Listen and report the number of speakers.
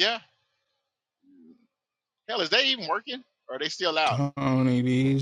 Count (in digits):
2